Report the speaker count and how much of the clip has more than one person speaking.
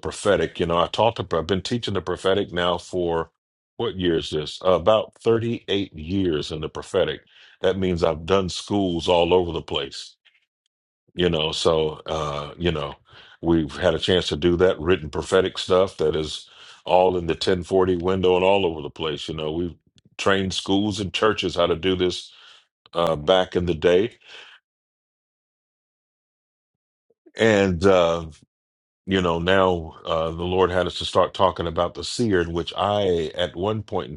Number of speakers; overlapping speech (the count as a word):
one, no overlap